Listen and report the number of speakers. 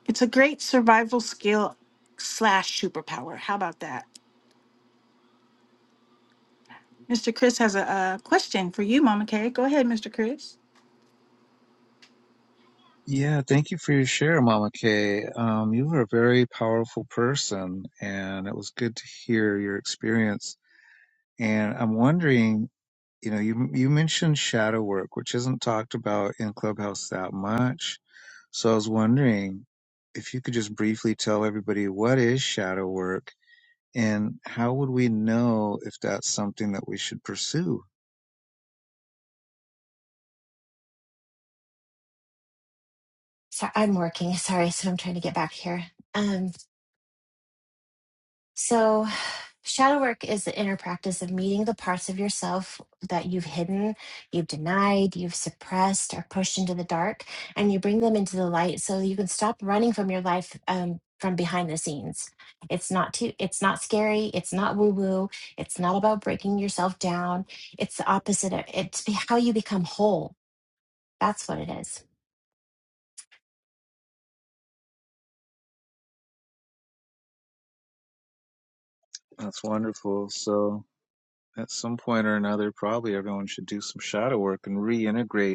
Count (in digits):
3